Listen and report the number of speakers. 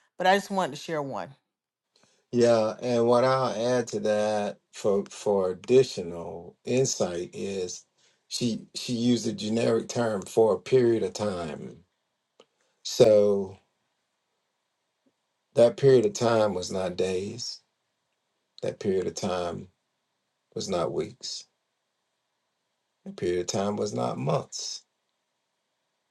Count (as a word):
two